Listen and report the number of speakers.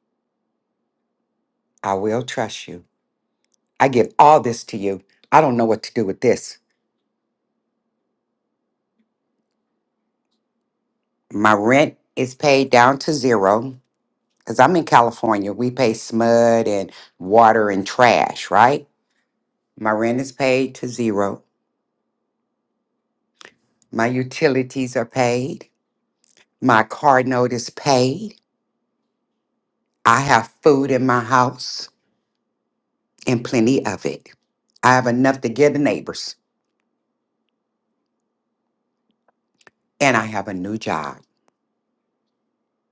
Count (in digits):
1